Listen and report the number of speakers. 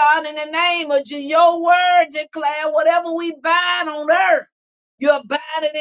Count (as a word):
one